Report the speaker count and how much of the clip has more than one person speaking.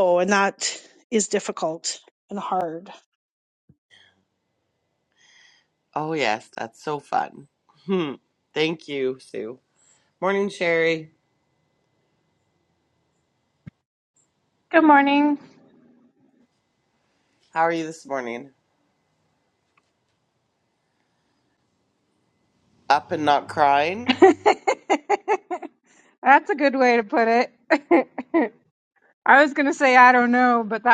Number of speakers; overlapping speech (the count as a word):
three, no overlap